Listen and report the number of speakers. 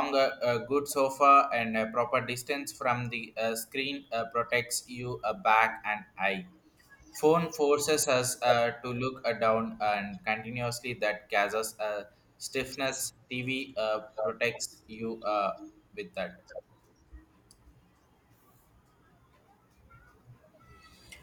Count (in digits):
1